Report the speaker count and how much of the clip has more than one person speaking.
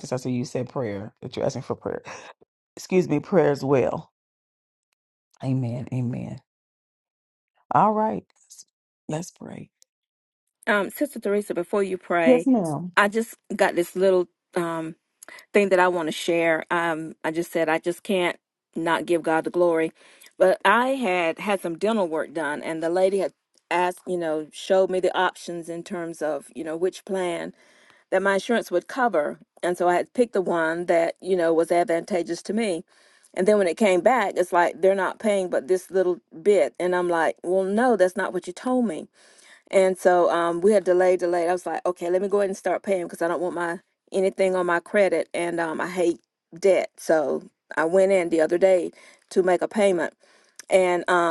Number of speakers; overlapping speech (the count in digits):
2, under 1%